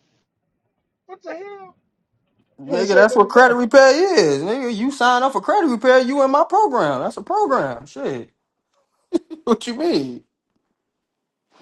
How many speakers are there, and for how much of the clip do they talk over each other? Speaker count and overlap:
2, about 8%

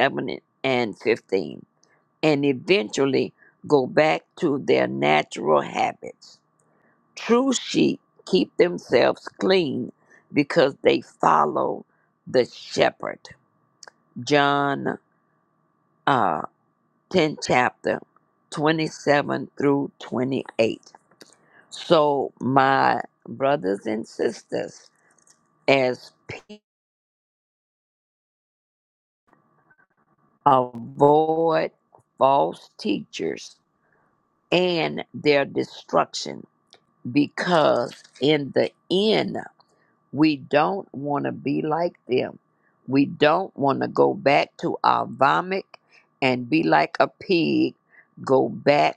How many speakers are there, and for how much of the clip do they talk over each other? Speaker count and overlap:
1, no overlap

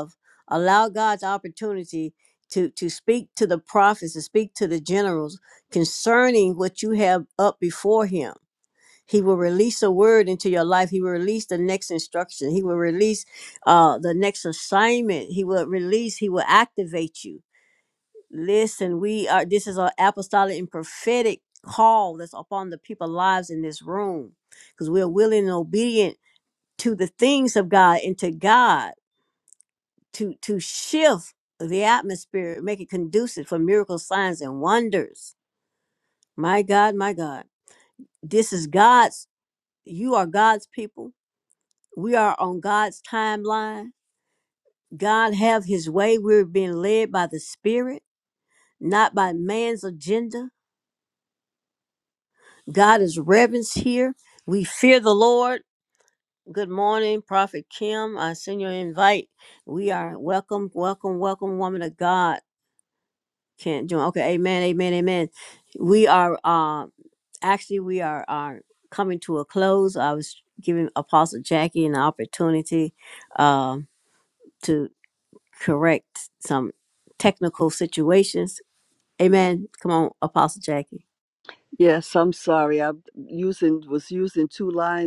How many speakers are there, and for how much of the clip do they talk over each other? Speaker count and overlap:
2, no overlap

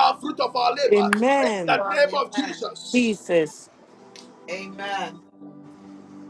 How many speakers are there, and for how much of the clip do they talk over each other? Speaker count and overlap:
3, about 20%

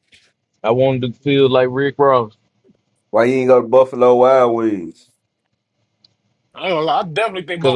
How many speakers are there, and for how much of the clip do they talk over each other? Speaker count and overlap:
3, about 2%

